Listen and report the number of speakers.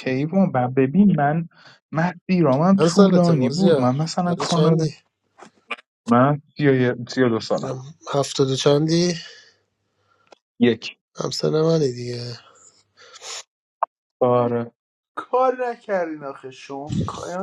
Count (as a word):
three